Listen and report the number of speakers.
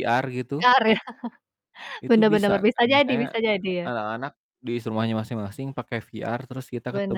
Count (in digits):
2